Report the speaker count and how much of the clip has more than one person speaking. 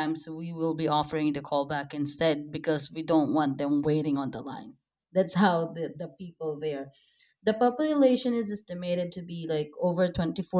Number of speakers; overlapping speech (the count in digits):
1, no overlap